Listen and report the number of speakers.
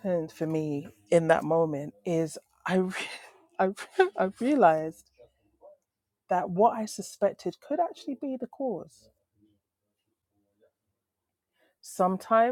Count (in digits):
1